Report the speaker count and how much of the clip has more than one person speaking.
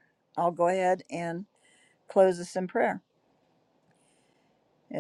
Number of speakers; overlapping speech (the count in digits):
1, no overlap